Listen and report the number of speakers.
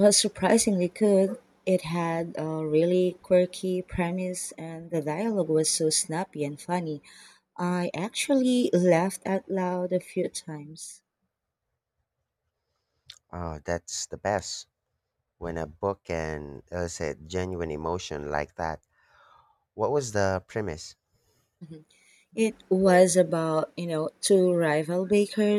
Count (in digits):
2